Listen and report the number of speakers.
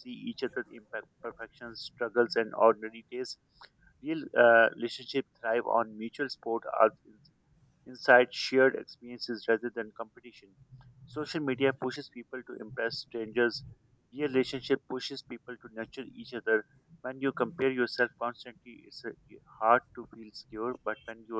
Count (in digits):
1